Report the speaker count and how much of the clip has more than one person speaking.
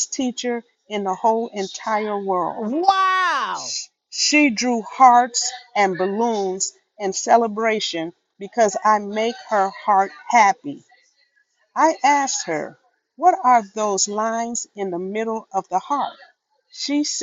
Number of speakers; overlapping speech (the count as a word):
two, under 1%